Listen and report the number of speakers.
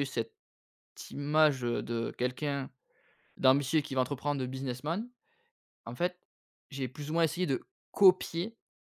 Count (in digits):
1